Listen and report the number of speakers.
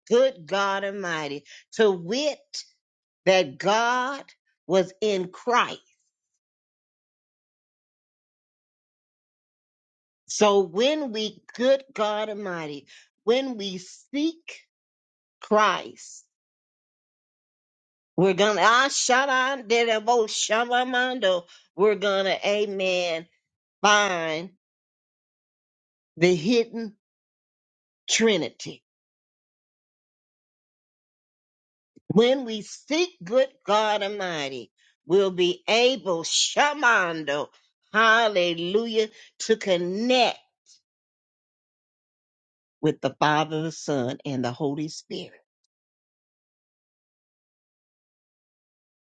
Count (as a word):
one